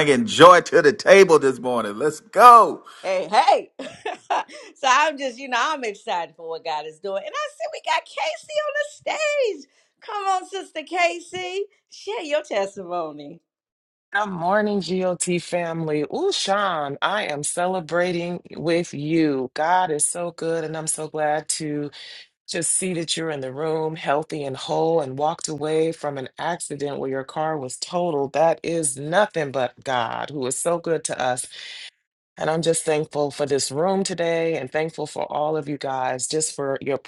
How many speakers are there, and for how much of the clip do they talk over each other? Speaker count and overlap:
three, no overlap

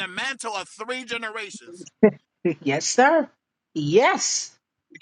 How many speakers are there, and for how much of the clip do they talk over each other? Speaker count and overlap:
two, no overlap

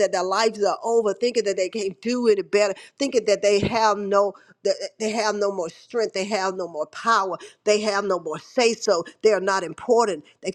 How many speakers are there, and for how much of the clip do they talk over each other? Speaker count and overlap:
one, no overlap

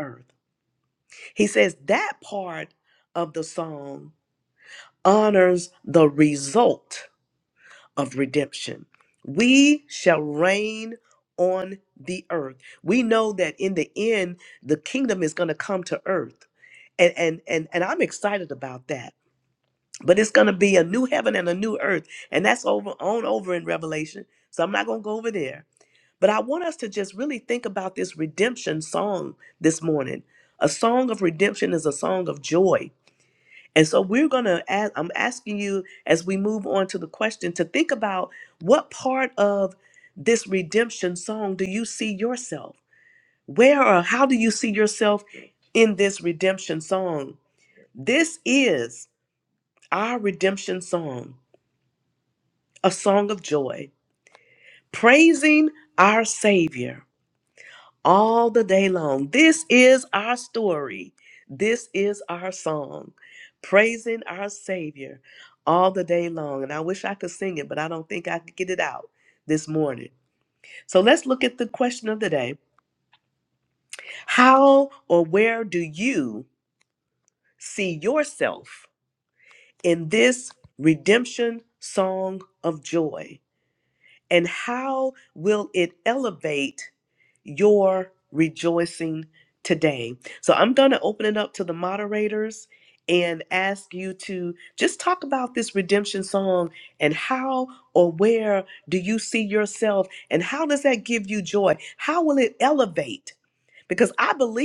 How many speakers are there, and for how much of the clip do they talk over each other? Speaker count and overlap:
one, no overlap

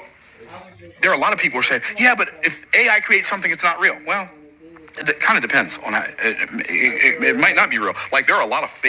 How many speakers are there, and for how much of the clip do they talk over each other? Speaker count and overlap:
one, no overlap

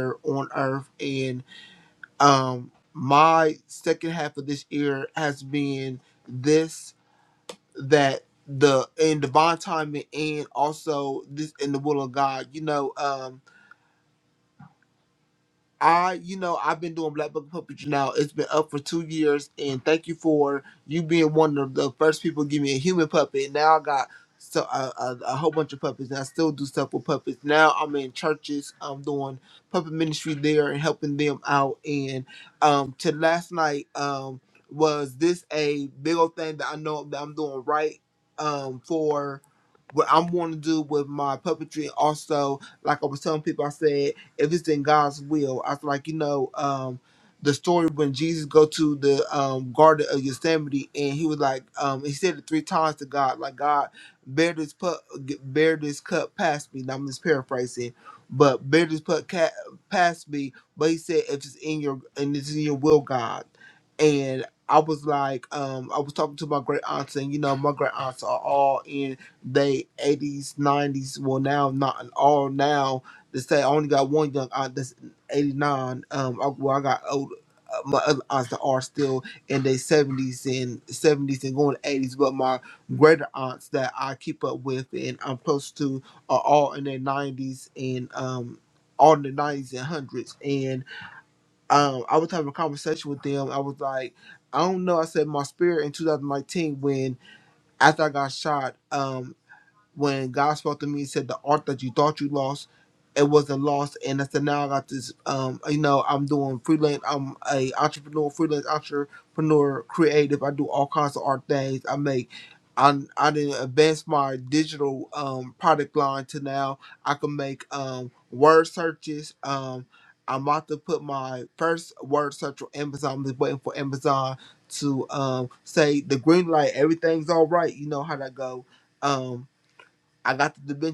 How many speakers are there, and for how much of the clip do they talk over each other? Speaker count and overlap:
one, no overlap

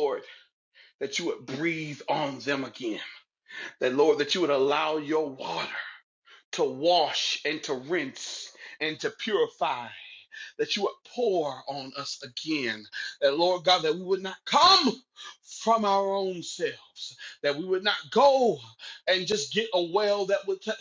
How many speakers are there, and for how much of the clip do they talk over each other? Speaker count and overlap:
one, no overlap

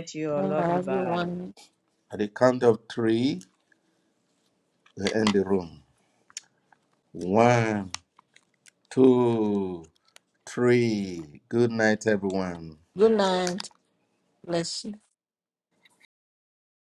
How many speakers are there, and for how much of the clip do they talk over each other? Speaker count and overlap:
three, about 4%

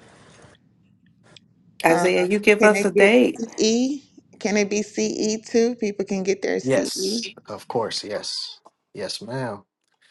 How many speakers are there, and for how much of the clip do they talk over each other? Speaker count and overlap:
three, about 17%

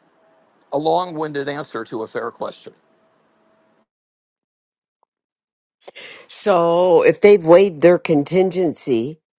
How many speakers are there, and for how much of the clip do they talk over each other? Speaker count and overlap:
two, no overlap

